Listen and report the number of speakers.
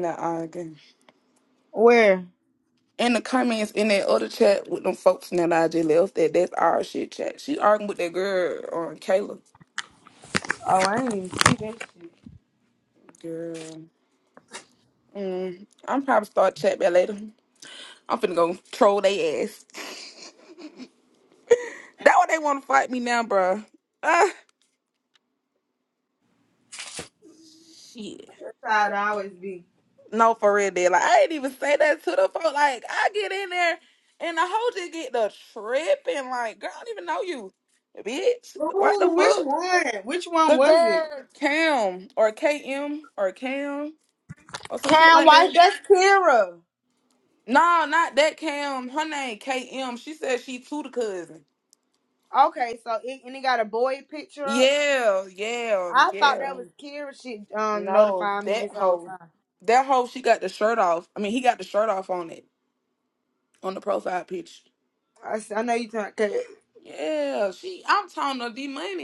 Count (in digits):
2